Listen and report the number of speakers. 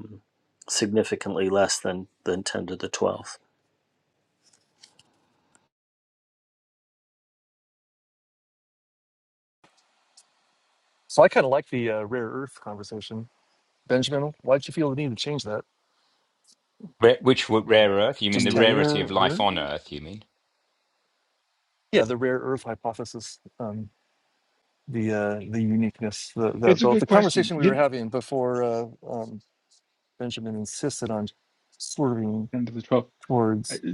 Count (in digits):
4